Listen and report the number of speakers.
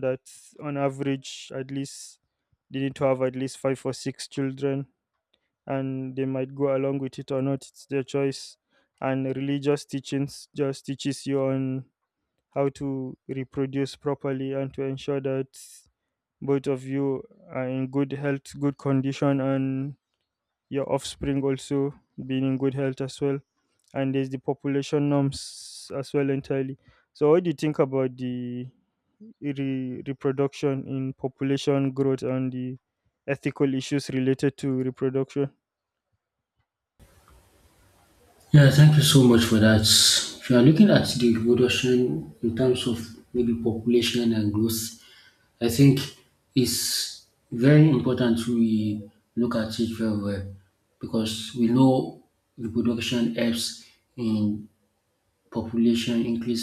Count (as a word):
two